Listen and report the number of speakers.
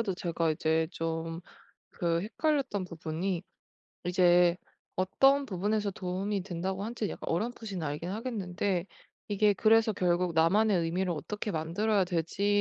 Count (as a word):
one